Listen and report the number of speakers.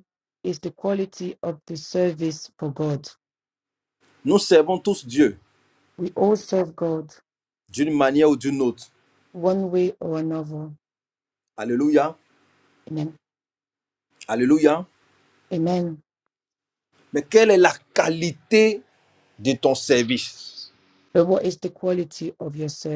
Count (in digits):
2